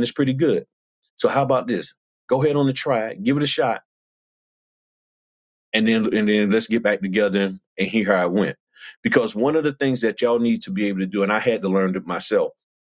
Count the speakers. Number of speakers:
1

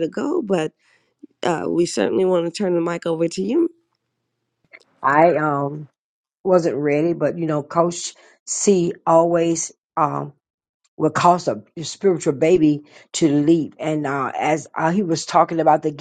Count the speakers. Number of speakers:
2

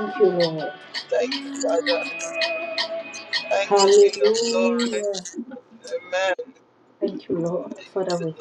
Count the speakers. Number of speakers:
2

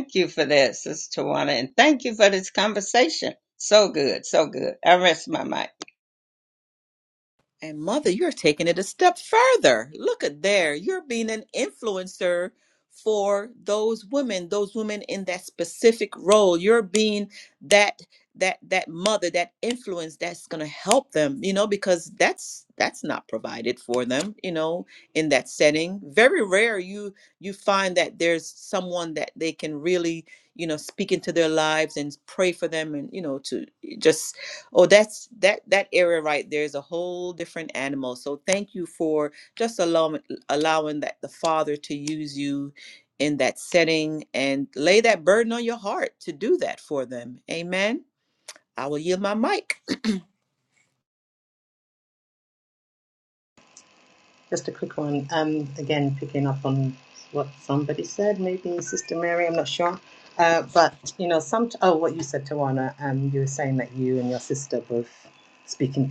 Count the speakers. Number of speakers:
3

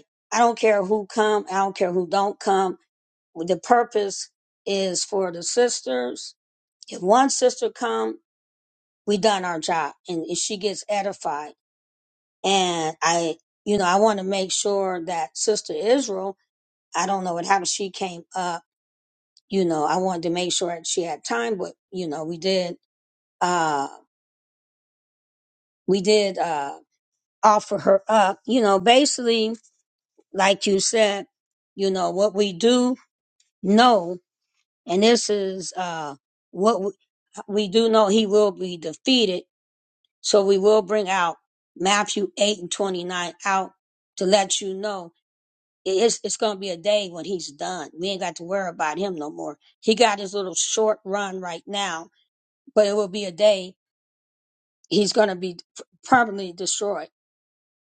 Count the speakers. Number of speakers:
1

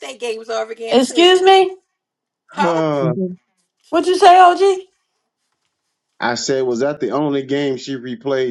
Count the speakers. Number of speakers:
3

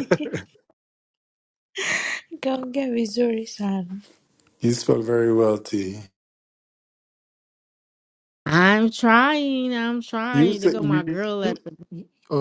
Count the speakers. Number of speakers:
3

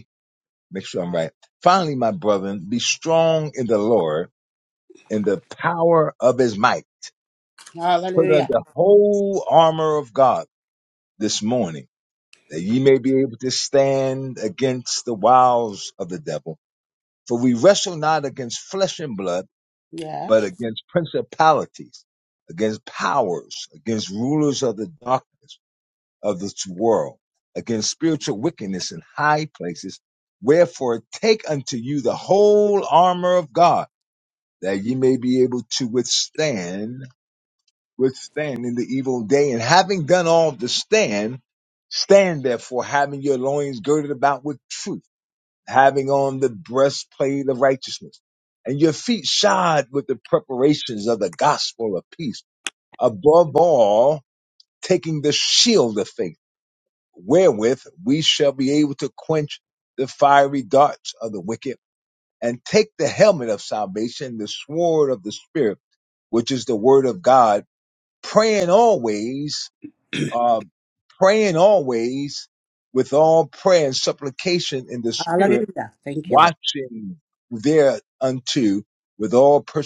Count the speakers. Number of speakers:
2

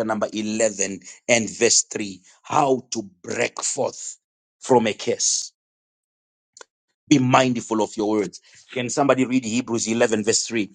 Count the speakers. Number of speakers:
1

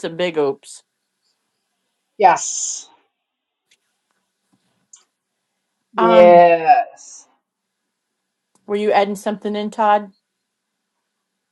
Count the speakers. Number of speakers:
2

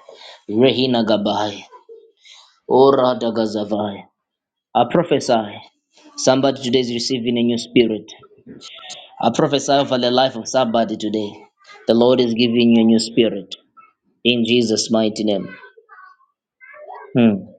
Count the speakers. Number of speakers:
1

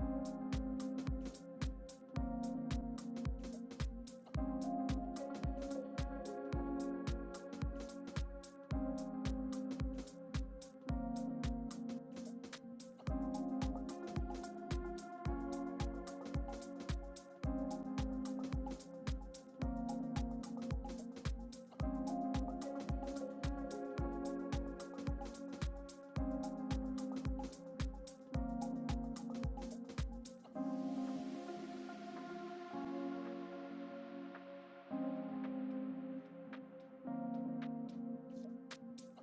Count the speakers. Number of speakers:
0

